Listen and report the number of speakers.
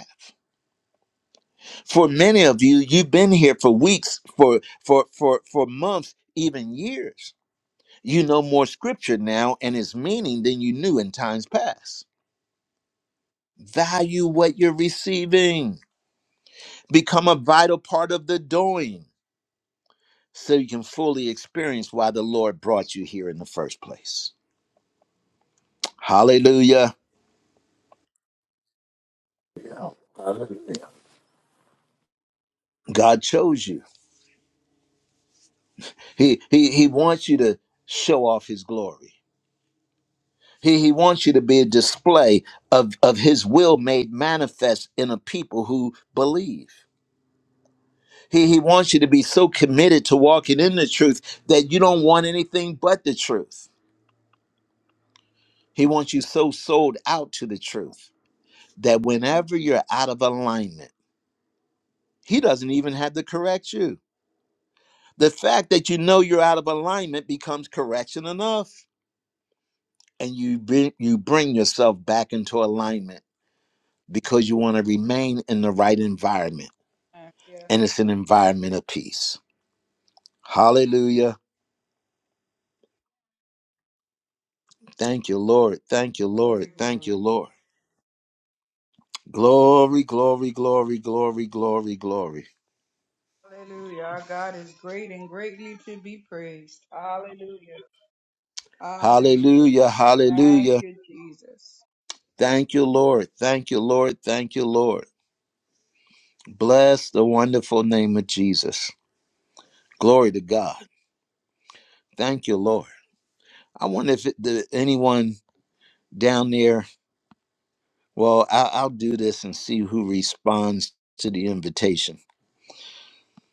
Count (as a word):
three